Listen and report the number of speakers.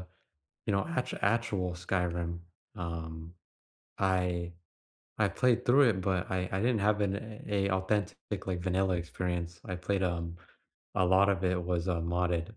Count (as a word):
one